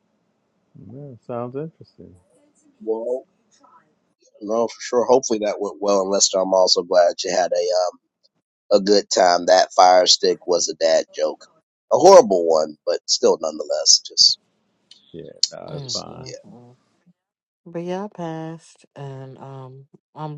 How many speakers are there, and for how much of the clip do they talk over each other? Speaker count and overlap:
three, about 4%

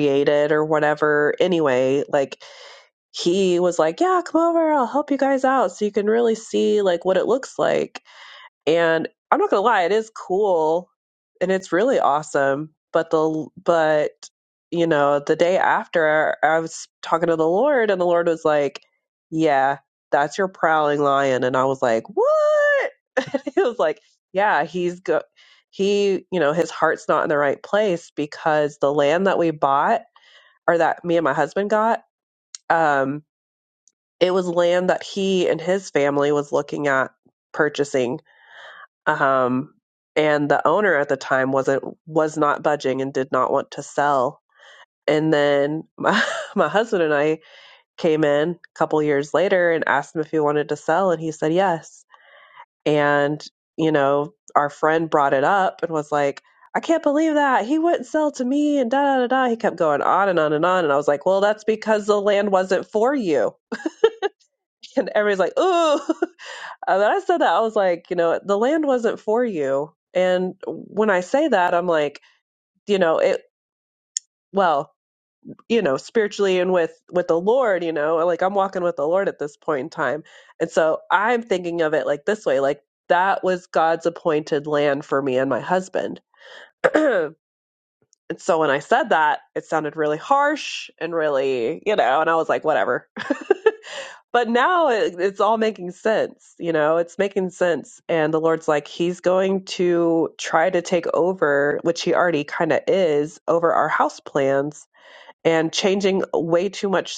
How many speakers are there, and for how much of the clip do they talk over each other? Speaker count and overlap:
one, no overlap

